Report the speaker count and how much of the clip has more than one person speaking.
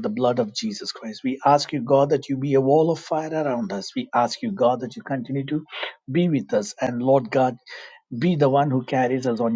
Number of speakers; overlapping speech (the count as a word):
one, no overlap